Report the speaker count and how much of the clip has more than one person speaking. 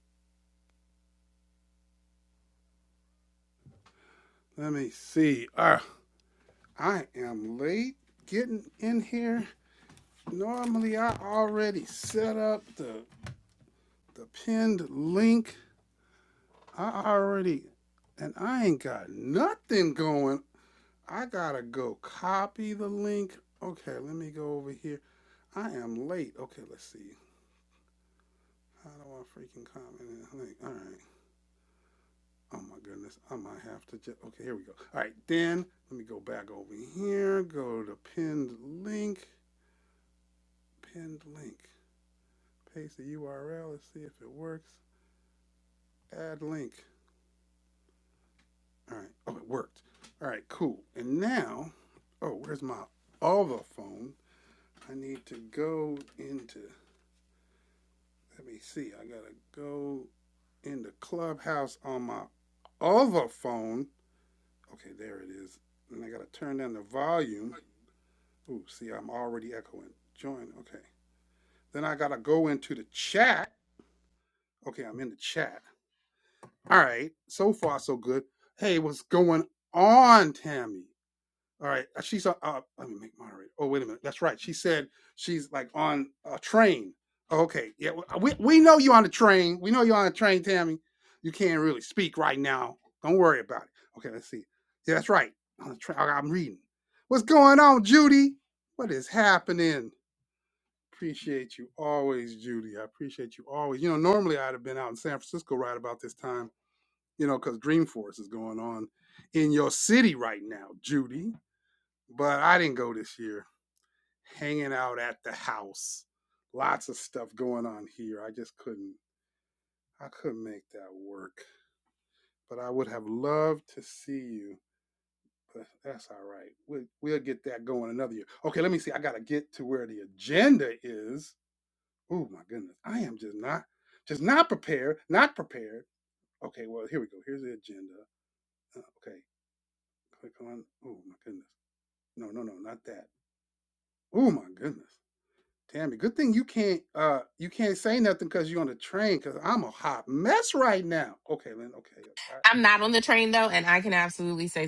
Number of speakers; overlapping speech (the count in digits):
2, no overlap